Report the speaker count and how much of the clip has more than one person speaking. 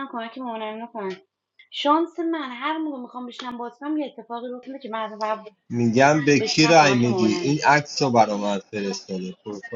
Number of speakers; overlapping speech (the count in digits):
2, about 12%